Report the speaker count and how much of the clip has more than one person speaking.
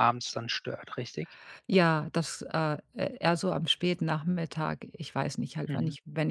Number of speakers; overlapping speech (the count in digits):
2, about 4%